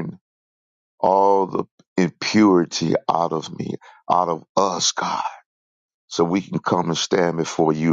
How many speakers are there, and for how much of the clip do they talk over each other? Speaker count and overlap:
1, no overlap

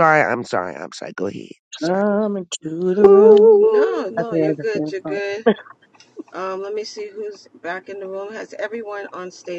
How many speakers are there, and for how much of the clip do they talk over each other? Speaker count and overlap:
3, about 22%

